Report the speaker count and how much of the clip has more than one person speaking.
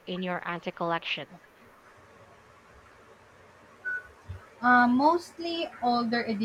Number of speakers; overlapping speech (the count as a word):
two, no overlap